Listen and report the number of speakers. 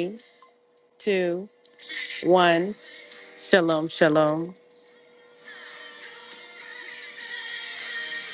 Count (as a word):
one